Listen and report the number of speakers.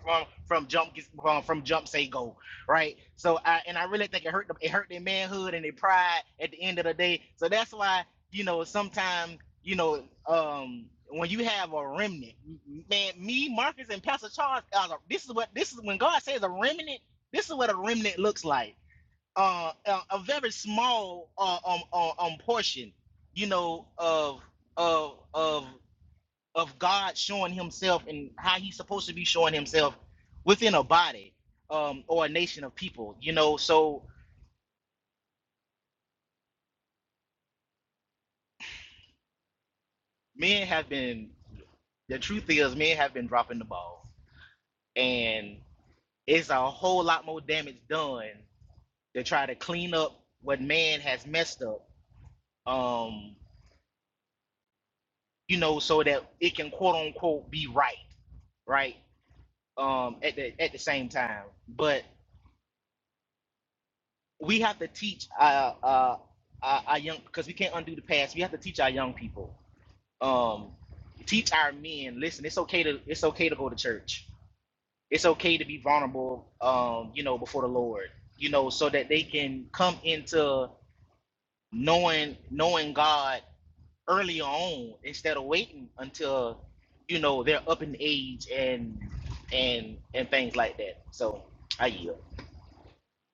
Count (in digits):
1